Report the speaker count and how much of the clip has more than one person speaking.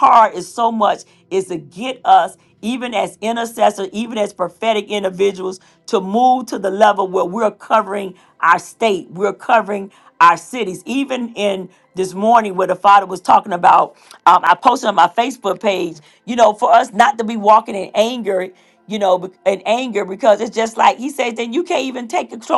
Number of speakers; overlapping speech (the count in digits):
1, no overlap